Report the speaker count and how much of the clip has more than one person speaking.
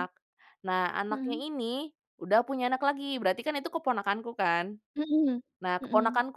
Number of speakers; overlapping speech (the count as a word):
two, about 12%